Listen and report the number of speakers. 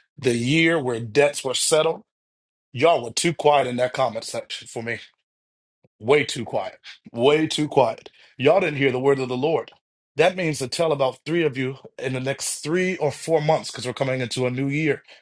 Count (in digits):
1